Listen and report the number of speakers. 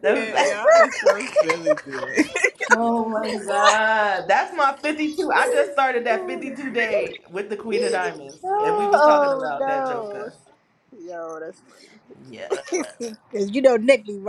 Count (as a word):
three